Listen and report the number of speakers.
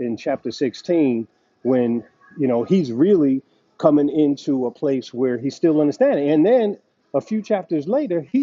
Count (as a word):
one